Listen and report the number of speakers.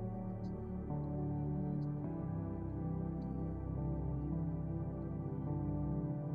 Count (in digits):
0